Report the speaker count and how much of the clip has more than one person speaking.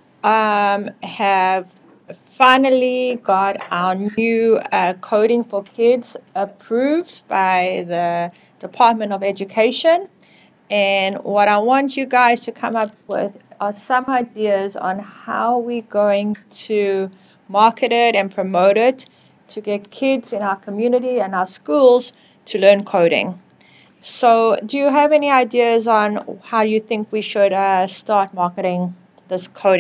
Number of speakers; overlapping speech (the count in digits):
1, no overlap